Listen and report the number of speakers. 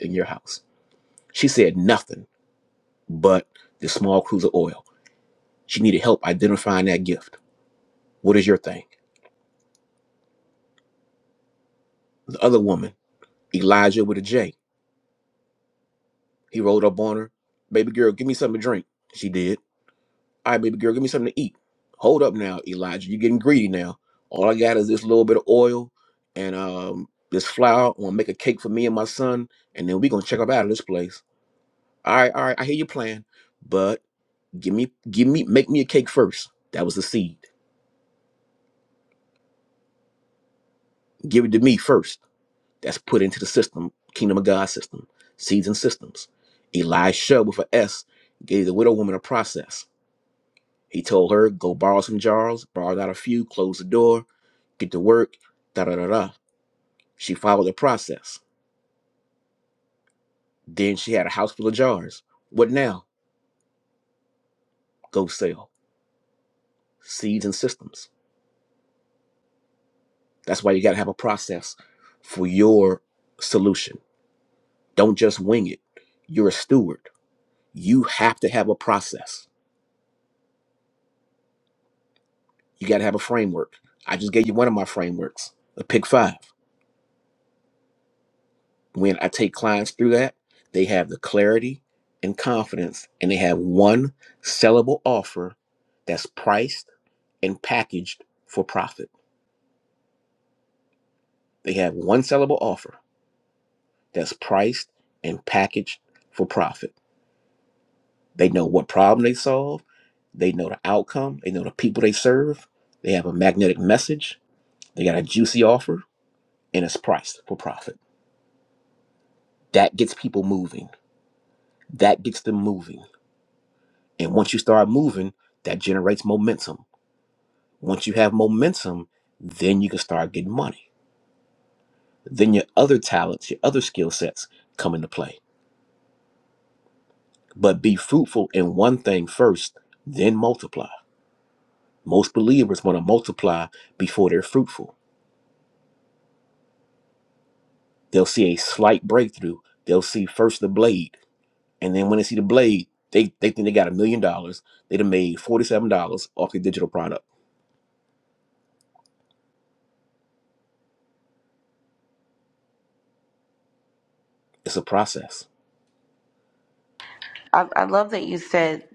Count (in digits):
2